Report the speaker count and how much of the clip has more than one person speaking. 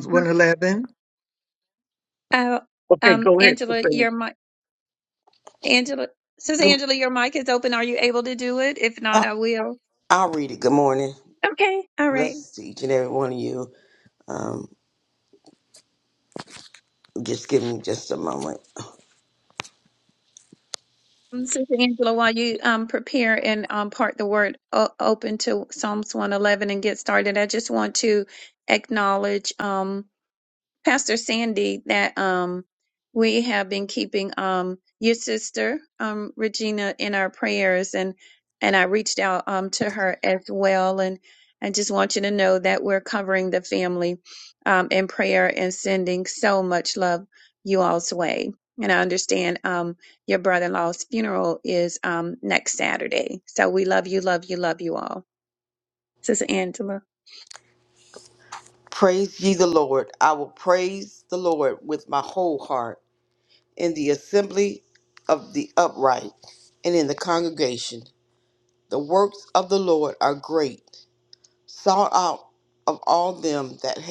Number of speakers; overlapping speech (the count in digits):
3, about 2%